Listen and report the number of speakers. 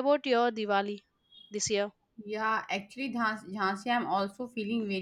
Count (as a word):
two